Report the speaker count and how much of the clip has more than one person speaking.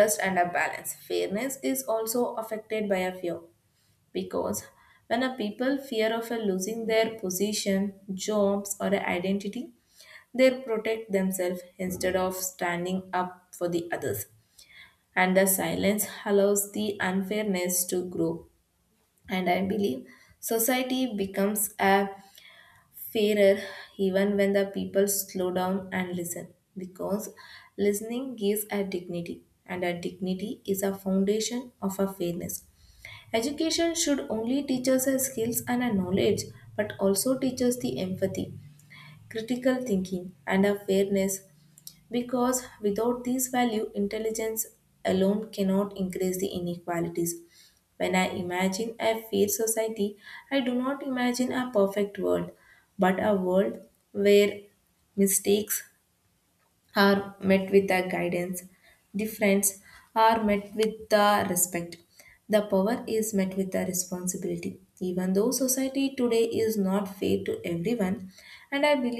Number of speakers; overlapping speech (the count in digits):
1, no overlap